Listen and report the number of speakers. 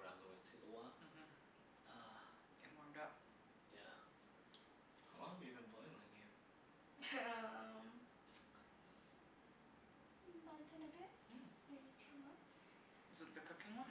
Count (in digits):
4